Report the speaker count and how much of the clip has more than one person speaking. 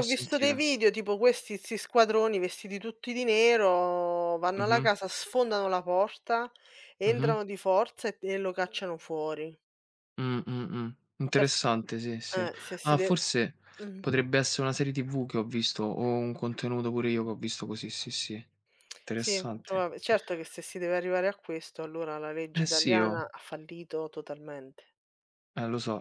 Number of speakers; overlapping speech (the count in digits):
2, about 13%